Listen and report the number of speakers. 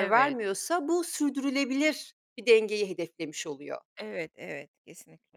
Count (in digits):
2